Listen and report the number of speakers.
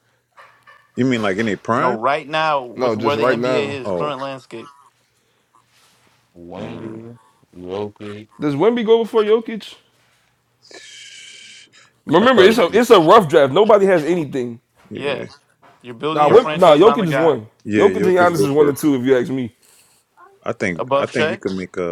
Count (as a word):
four